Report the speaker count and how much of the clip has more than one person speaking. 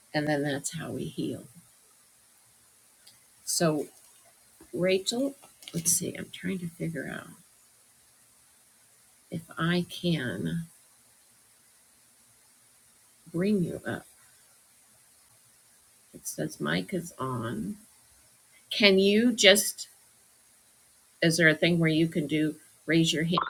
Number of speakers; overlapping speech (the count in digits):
1, no overlap